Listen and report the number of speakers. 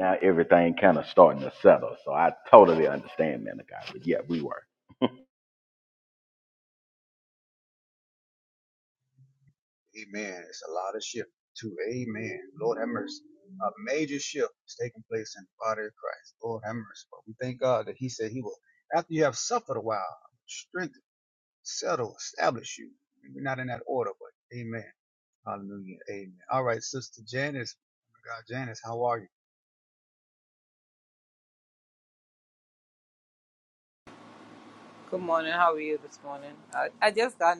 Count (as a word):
three